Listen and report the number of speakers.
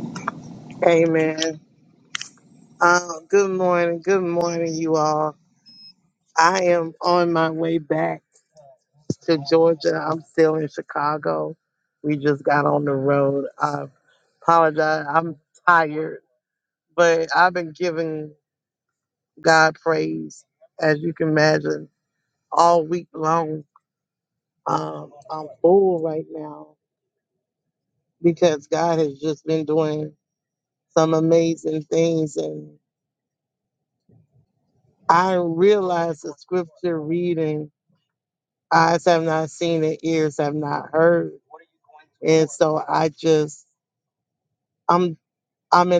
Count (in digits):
1